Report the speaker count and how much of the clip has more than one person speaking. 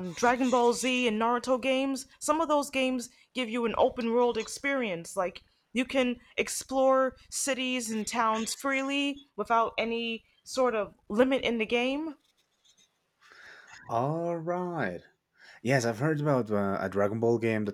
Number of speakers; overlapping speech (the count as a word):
two, no overlap